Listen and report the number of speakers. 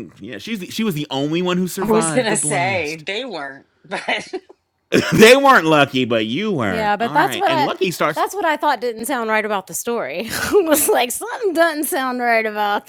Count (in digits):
3